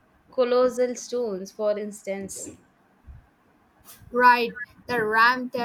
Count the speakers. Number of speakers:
two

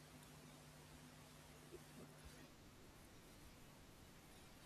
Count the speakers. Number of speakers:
zero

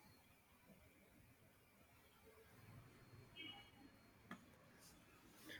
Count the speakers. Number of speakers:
zero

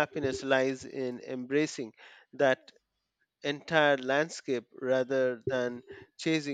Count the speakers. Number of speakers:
one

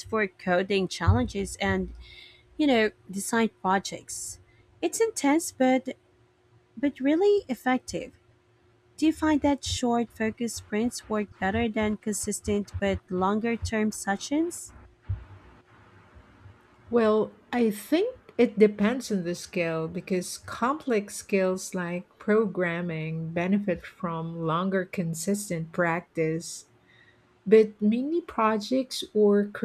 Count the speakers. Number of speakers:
two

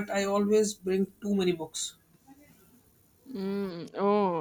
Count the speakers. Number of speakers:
two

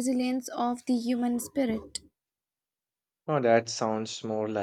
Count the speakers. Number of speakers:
two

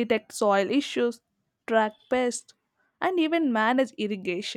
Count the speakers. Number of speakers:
one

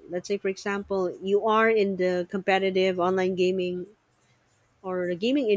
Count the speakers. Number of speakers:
one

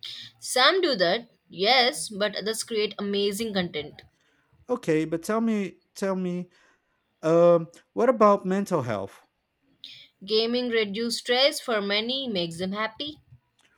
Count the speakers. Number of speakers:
two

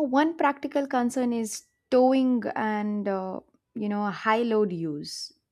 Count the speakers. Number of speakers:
one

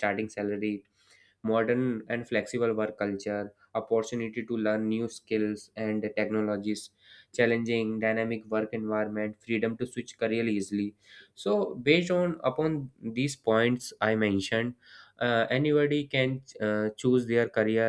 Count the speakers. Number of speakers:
one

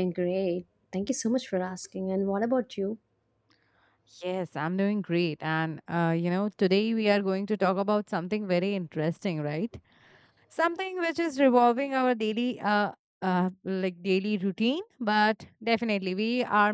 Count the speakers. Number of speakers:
two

